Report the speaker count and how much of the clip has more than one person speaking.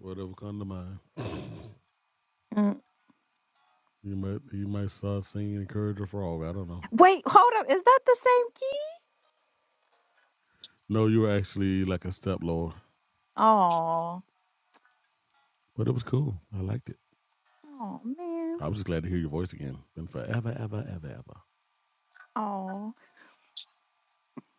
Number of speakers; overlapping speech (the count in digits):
2, under 1%